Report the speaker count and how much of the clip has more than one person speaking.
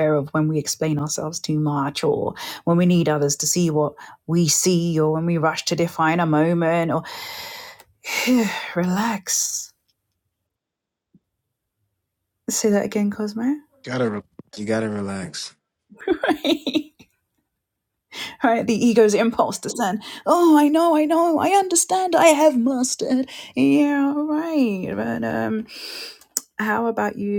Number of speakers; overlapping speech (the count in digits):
2, no overlap